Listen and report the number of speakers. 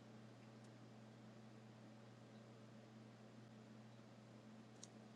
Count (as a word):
zero